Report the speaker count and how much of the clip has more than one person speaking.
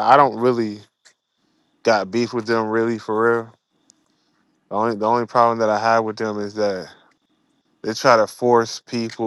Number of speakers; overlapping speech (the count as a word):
one, no overlap